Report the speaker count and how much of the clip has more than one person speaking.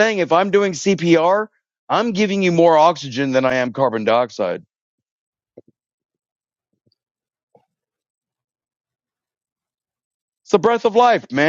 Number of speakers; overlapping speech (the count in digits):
1, no overlap